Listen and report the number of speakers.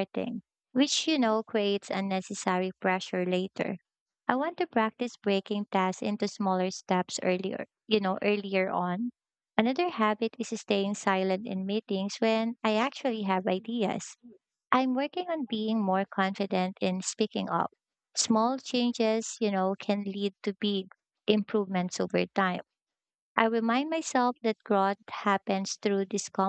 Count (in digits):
1